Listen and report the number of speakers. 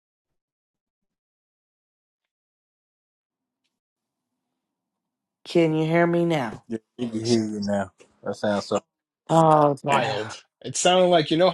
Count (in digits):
3